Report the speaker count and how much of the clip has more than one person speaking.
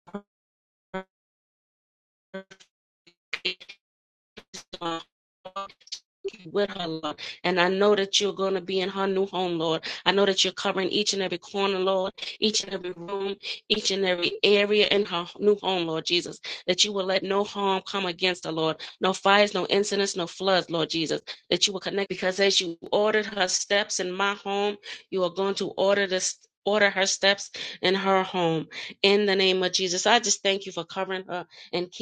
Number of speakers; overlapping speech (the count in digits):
1, no overlap